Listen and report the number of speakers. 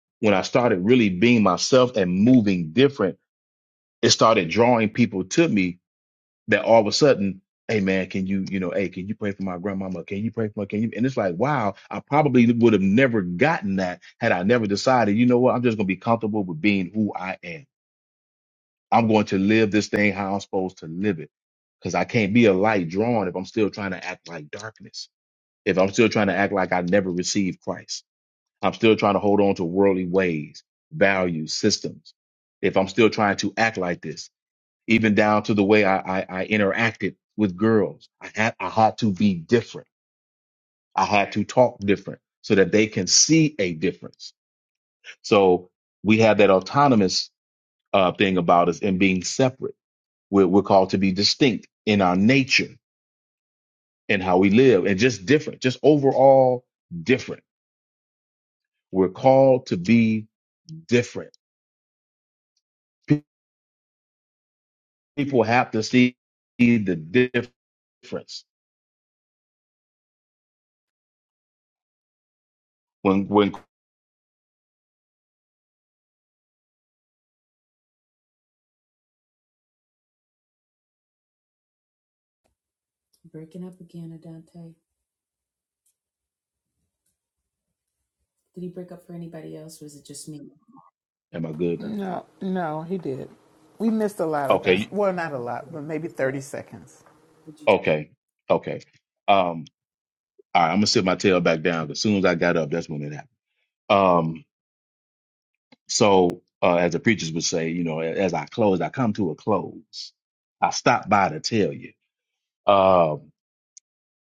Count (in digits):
3